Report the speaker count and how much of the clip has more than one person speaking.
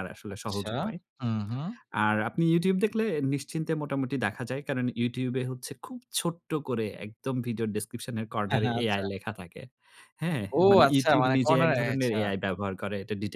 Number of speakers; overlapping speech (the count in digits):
2, about 20%